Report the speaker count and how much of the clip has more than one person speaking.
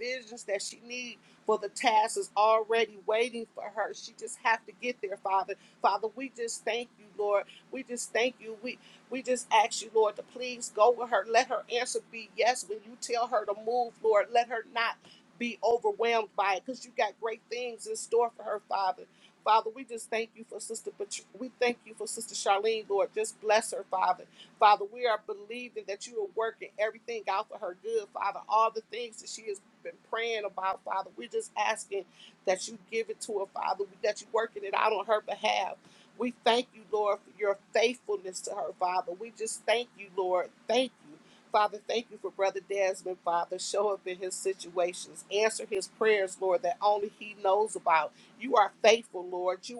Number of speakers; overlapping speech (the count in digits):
1, no overlap